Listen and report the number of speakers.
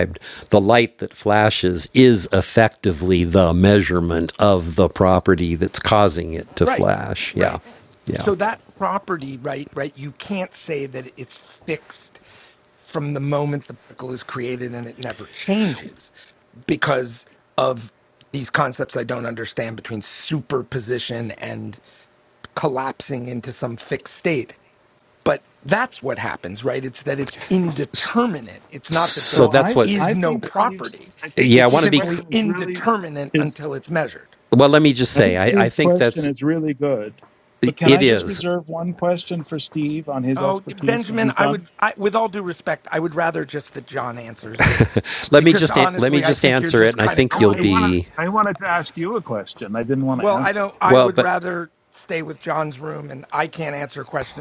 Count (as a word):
three